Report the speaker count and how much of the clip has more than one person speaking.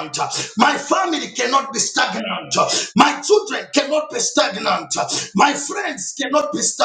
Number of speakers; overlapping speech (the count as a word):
one, no overlap